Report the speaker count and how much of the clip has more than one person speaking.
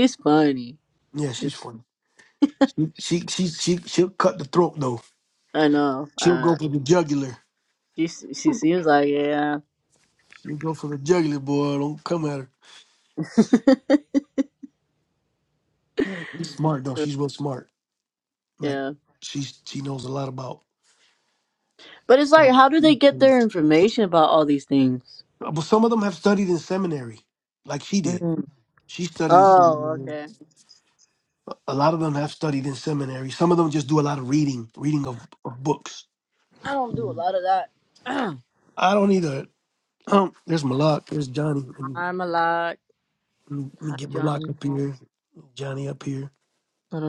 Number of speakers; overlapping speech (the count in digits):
2, about 5%